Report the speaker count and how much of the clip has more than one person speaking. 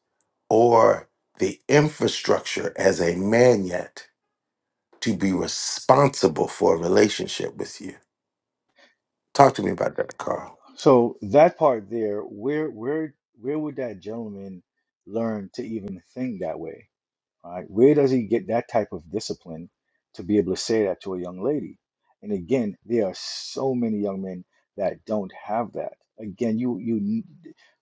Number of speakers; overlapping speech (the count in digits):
2, no overlap